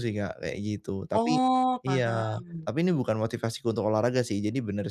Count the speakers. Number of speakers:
two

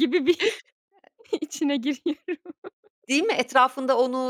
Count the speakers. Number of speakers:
two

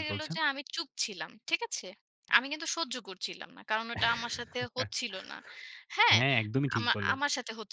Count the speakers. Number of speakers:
two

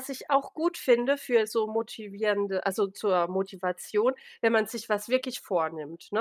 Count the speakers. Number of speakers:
one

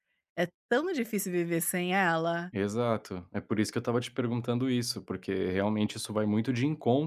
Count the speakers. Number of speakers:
two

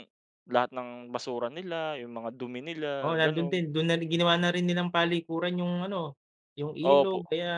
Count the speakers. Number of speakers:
two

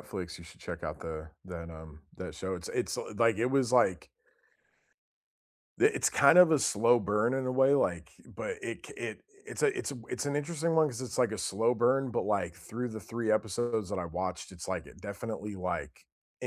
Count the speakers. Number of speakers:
one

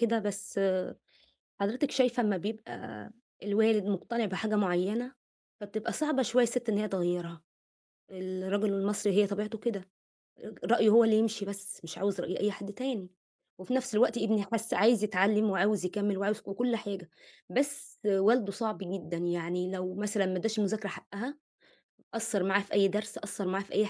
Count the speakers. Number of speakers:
one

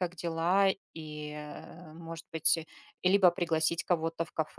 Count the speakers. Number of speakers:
one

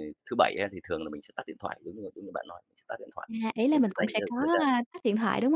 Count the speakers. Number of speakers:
two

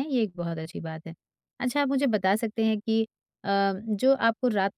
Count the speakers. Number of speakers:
one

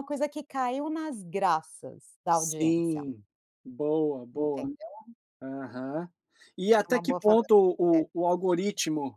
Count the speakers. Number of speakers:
two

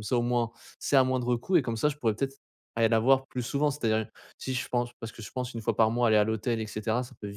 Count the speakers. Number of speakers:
one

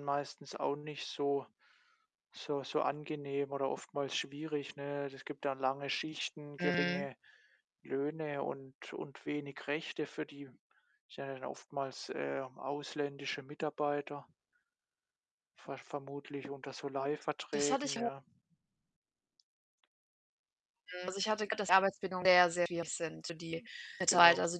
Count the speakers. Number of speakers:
two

